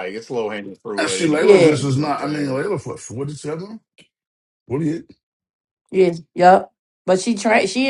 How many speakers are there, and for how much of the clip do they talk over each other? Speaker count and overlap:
3, about 20%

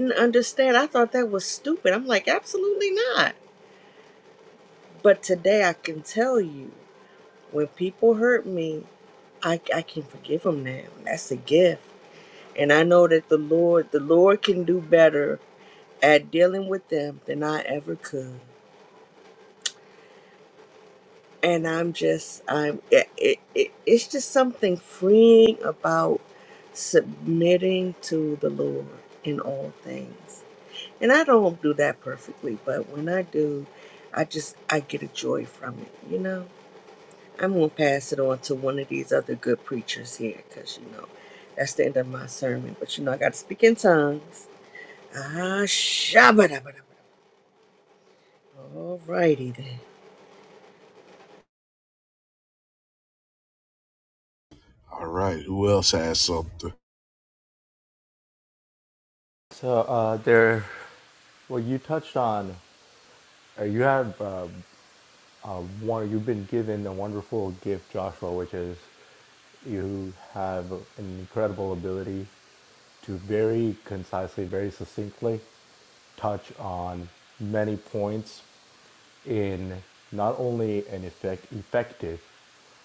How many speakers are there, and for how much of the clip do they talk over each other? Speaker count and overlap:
3, no overlap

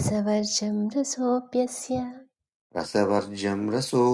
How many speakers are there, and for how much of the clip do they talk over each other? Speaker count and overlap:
2, no overlap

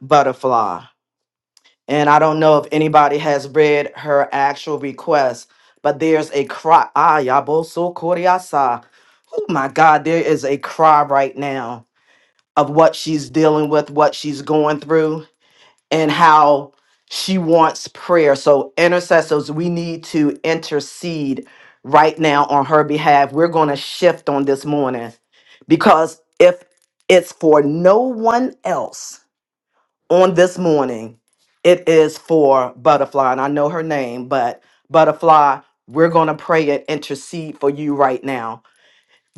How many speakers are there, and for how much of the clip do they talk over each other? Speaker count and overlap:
1, no overlap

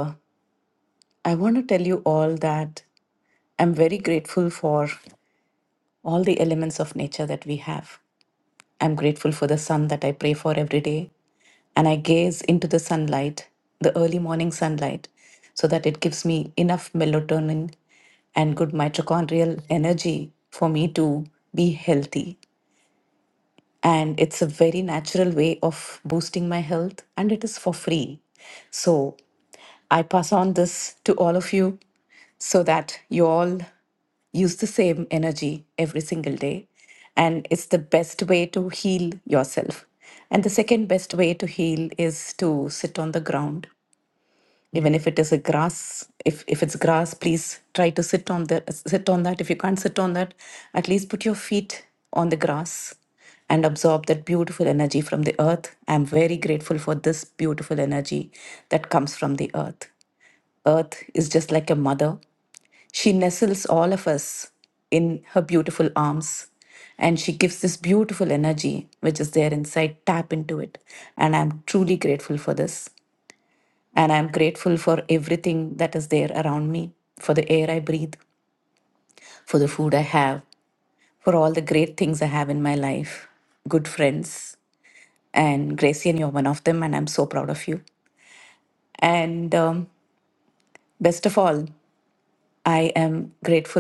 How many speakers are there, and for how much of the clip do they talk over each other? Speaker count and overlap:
1, no overlap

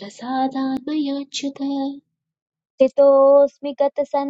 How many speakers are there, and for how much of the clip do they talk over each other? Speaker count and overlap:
2, no overlap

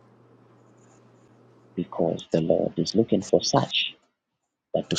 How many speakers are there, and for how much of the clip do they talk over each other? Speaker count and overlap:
1, no overlap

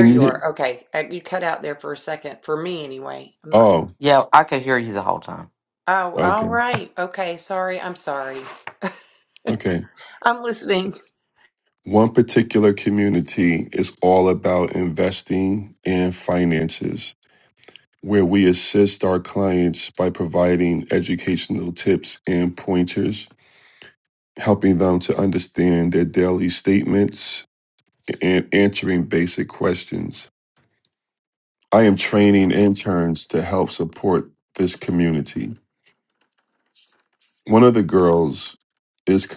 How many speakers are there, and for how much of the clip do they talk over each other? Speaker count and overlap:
3, about 3%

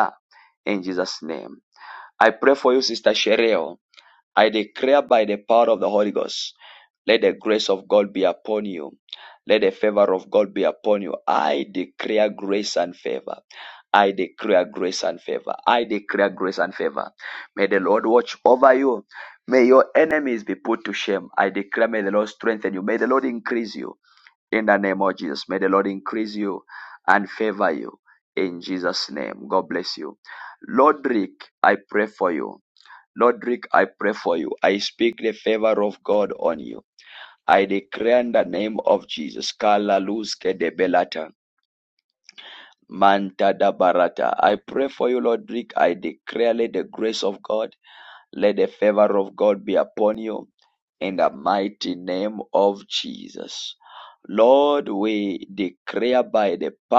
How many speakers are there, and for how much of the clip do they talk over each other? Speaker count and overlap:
1, no overlap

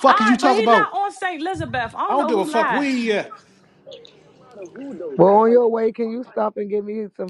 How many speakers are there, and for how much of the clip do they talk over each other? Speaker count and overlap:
4, about 28%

